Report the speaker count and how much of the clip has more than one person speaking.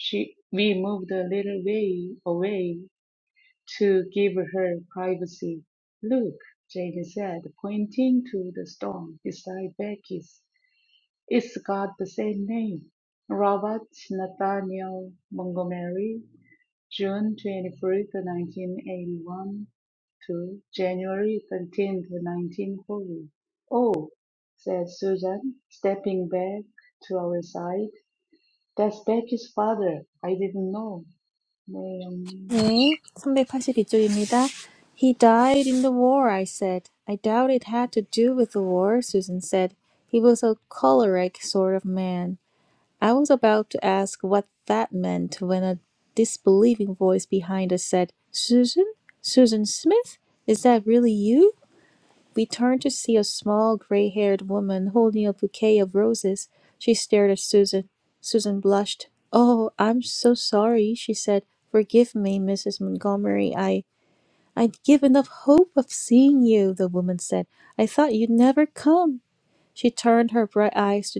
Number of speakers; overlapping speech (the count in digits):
2, no overlap